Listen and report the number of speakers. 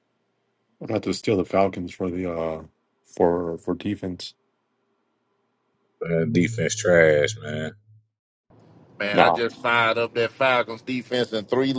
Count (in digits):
3